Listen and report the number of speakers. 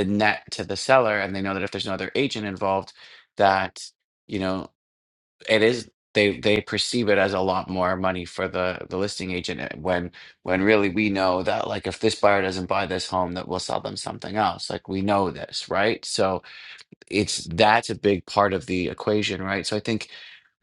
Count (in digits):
1